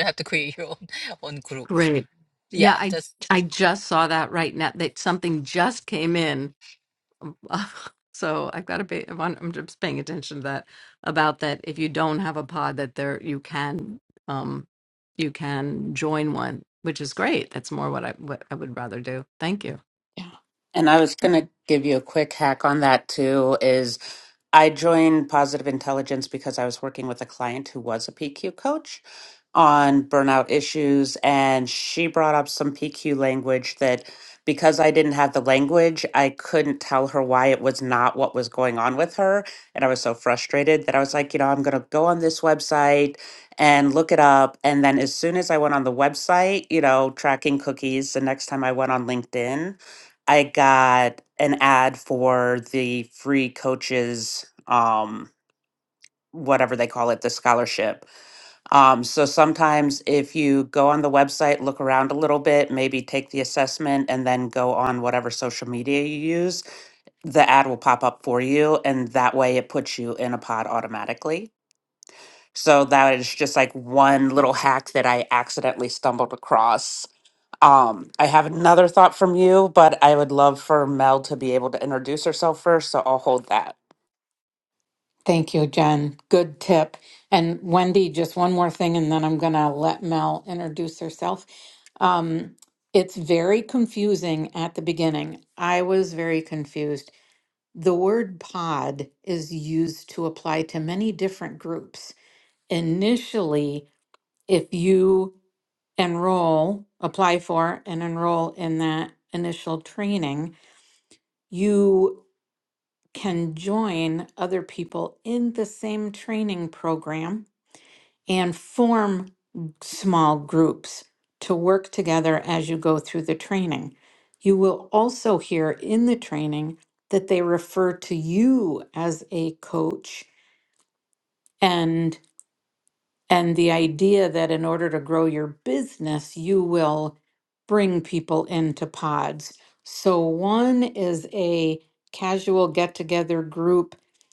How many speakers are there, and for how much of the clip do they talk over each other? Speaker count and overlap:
four, under 1%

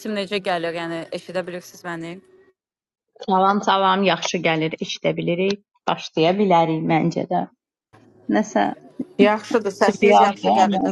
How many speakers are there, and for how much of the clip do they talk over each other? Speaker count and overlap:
three, about 10%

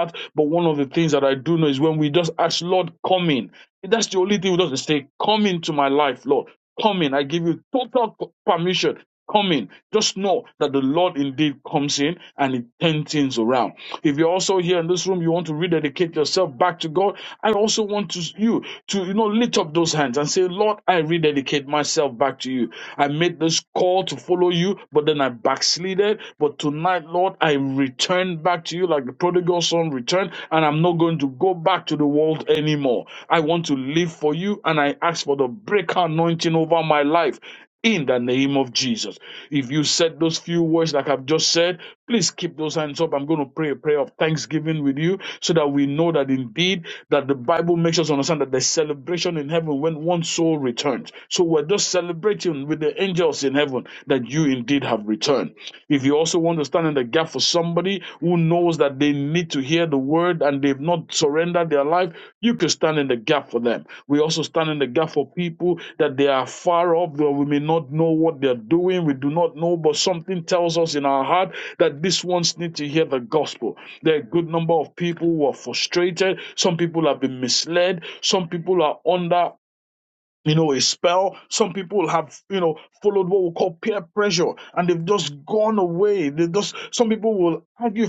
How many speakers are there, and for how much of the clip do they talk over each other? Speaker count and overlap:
one, no overlap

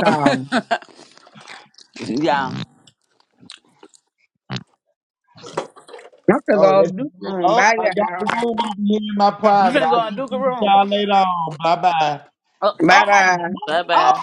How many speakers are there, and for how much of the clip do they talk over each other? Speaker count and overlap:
three, about 26%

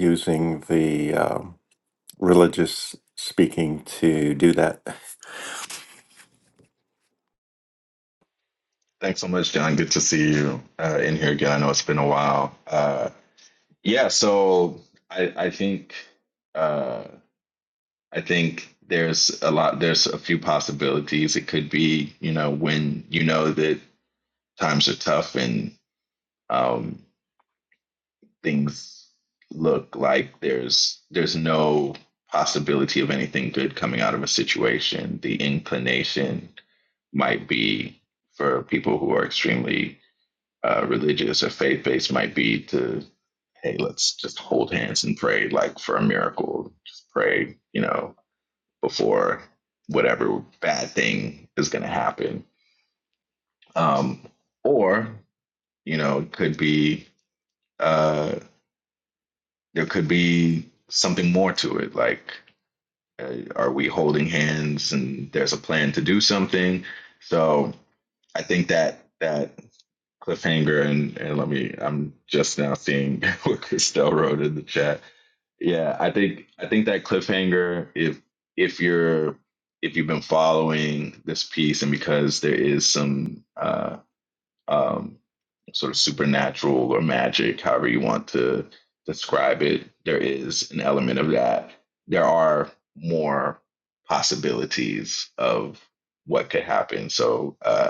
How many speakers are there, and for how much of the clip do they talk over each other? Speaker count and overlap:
two, no overlap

